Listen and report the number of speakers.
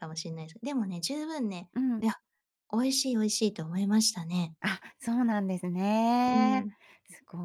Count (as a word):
two